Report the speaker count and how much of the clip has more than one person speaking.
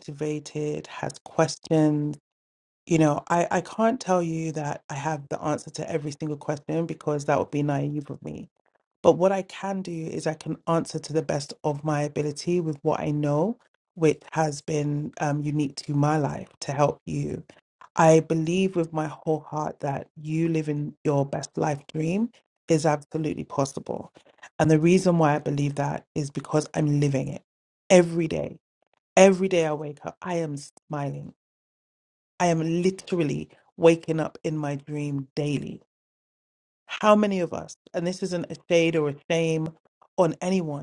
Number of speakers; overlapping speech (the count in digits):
1, no overlap